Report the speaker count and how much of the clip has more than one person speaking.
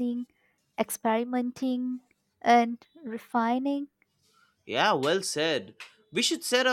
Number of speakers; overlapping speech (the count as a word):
two, no overlap